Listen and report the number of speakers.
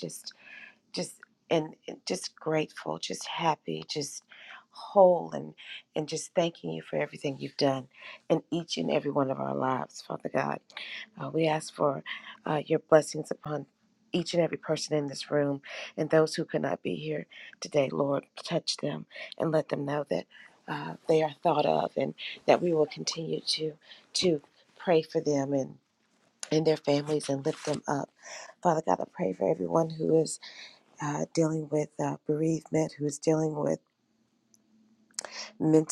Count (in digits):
1